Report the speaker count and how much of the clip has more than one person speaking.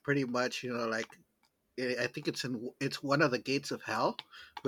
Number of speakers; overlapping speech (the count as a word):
one, no overlap